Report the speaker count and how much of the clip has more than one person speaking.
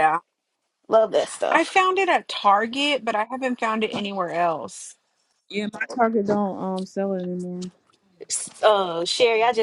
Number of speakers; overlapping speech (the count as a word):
three, about 3%